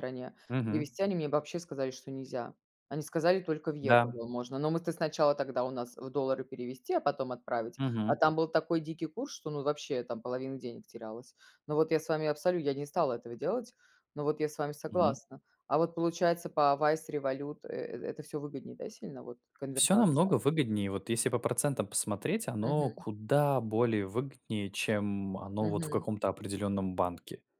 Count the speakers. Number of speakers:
2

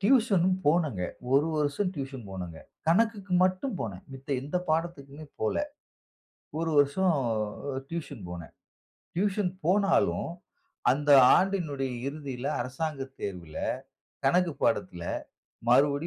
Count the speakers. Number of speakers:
1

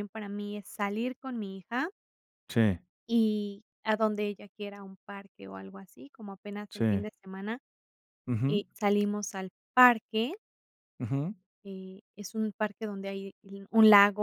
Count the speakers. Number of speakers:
2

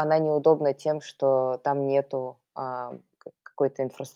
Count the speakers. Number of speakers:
1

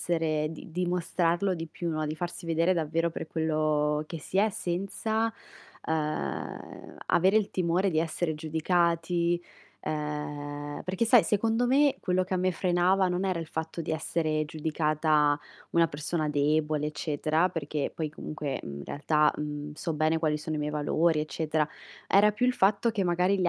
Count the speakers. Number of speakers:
1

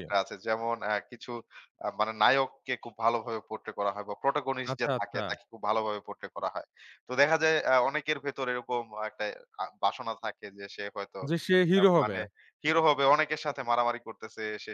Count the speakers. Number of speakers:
2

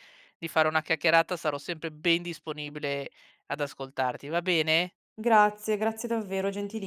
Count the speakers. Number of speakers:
2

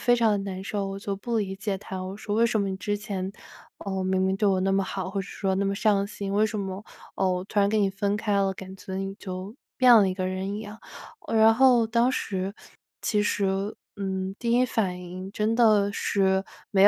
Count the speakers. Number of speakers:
1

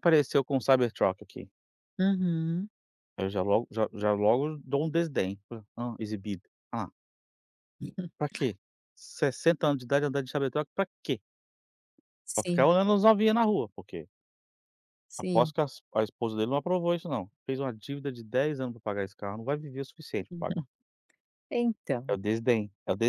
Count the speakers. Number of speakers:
2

